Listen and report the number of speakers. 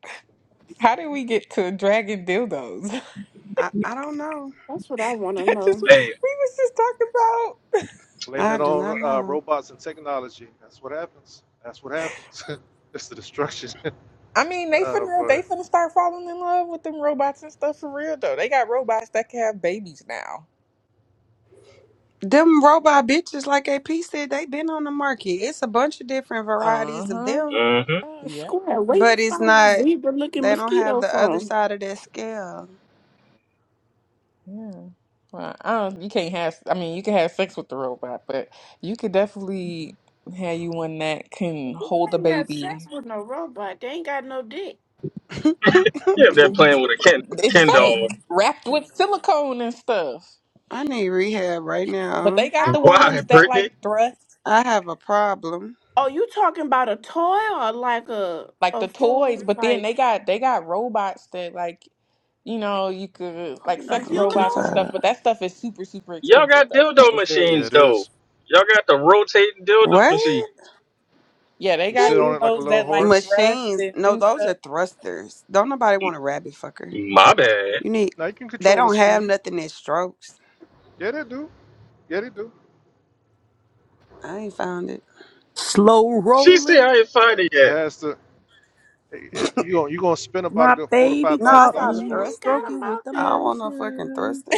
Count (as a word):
six